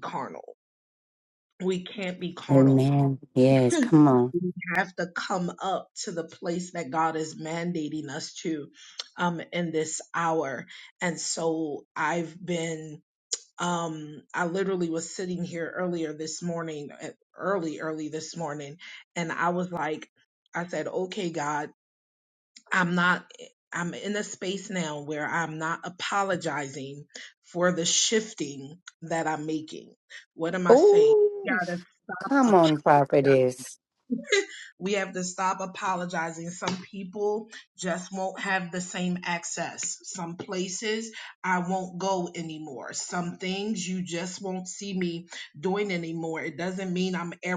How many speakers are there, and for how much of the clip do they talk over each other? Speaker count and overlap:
2, about 4%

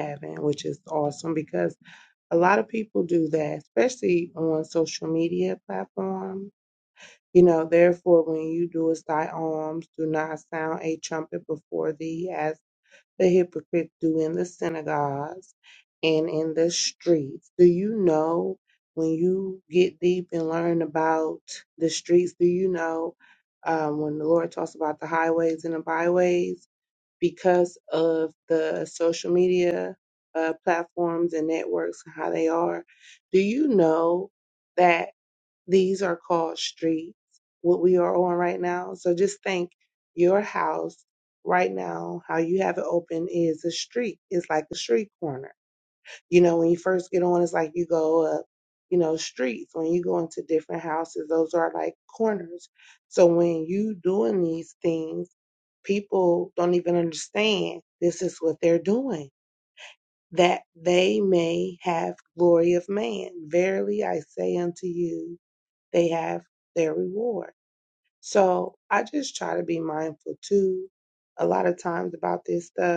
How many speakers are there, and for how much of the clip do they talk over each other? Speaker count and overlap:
1, no overlap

